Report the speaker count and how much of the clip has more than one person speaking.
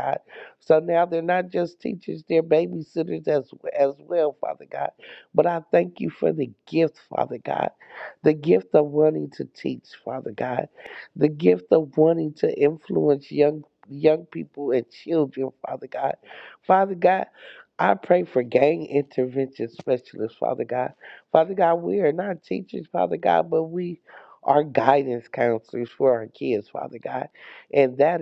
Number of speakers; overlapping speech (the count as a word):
one, no overlap